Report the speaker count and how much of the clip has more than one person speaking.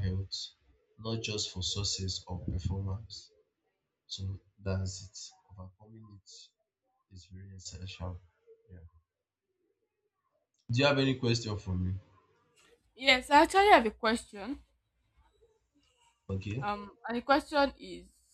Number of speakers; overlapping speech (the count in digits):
2, about 1%